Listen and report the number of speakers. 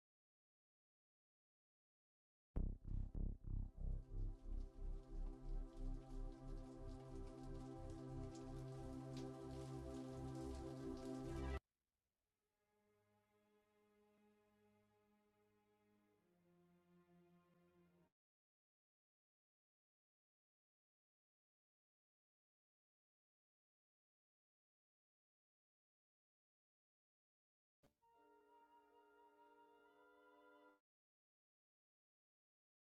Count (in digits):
0